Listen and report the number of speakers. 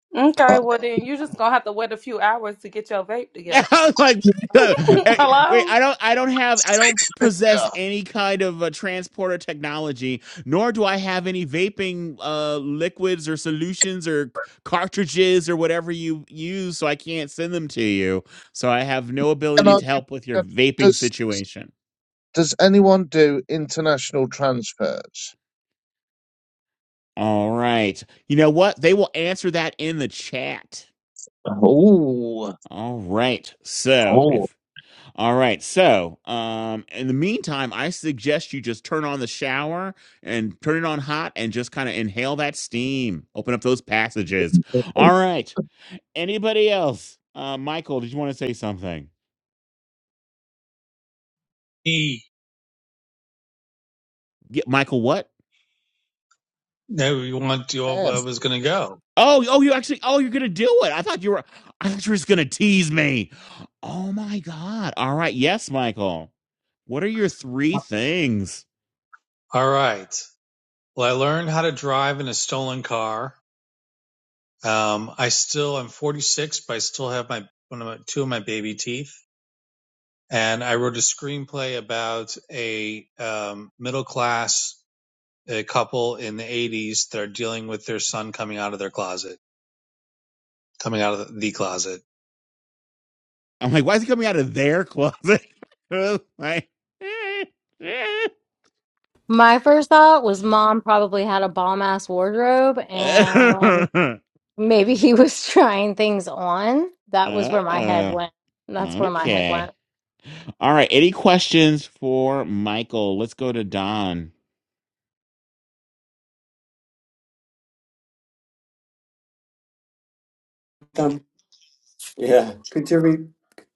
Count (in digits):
6